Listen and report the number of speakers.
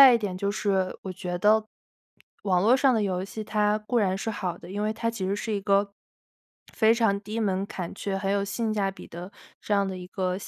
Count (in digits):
1